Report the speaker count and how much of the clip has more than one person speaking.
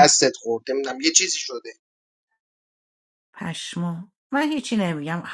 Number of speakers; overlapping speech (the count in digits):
2, no overlap